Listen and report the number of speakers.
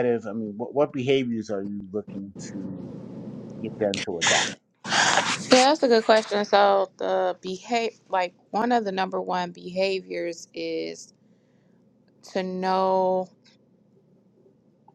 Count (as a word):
two